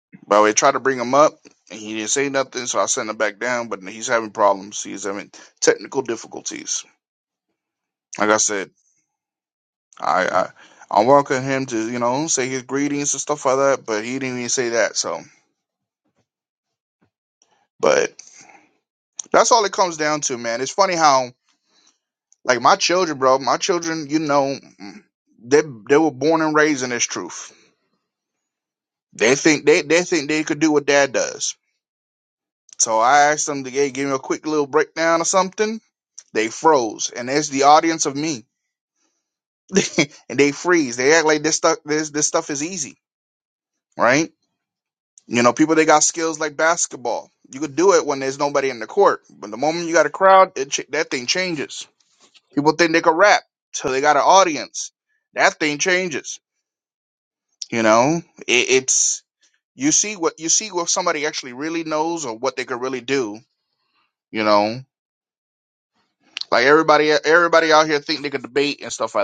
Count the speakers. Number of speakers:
1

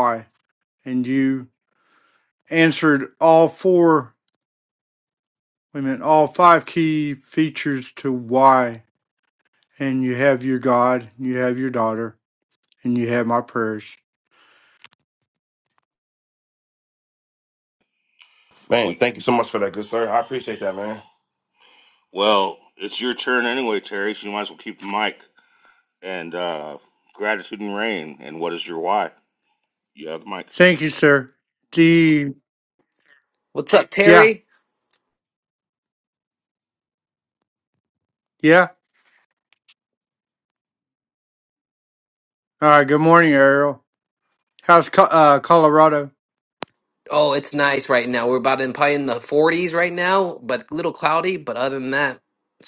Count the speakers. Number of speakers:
4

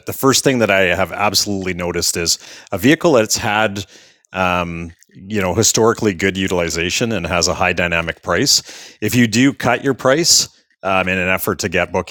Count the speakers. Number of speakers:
1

